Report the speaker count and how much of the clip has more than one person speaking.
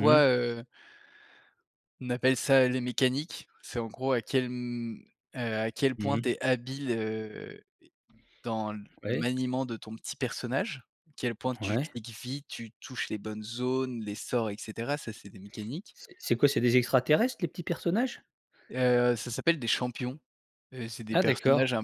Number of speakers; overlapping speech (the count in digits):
2, about 7%